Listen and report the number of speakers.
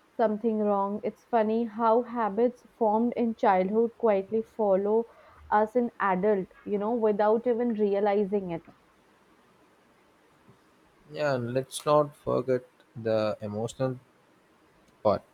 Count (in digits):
2